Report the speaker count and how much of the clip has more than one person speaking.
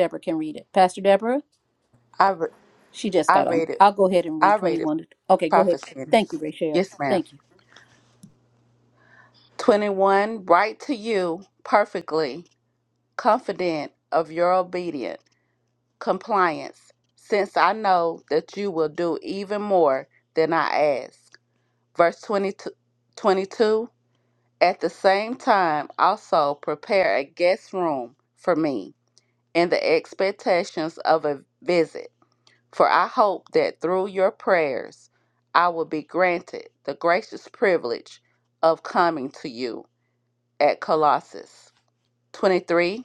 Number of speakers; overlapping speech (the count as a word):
two, about 4%